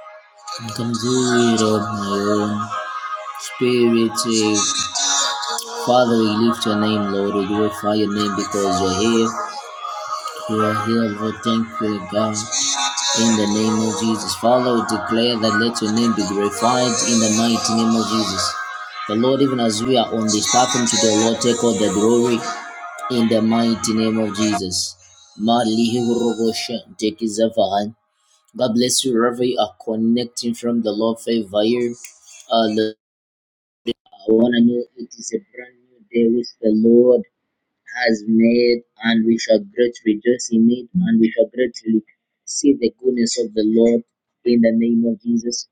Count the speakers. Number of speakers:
1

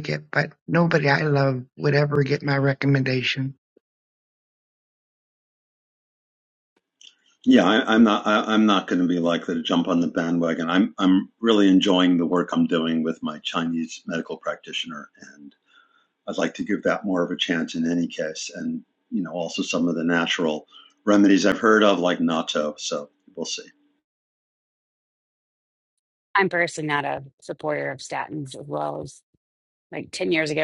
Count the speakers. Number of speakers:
3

